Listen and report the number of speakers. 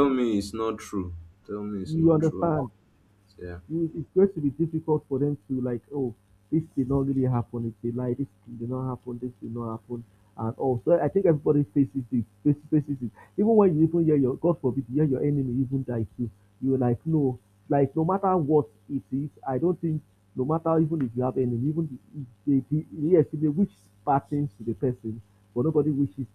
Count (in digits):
2